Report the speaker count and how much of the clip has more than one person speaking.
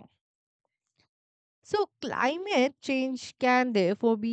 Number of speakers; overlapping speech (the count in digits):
1, no overlap